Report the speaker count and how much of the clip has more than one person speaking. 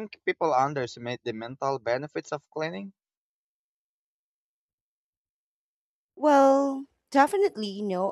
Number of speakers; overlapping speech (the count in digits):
2, no overlap